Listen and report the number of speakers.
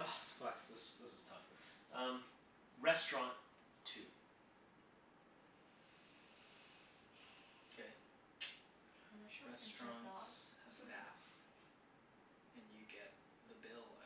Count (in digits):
3